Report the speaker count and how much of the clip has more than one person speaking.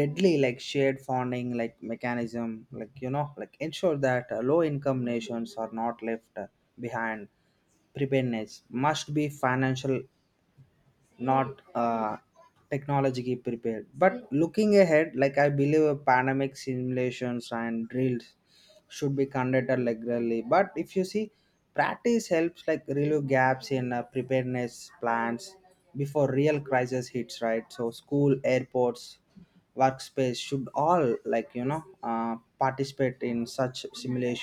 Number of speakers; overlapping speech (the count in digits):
1, no overlap